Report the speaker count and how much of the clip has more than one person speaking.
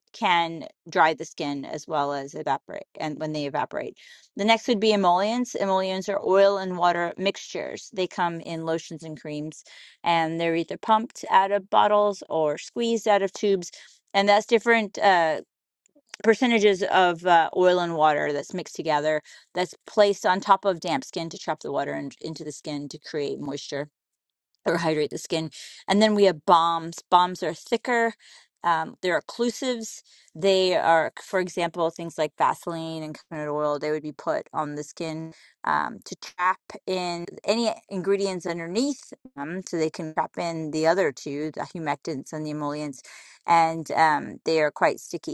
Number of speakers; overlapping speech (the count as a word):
one, no overlap